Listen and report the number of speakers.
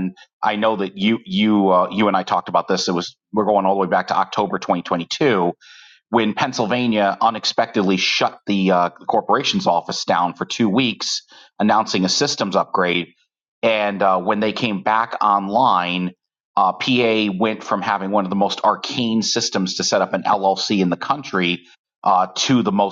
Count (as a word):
one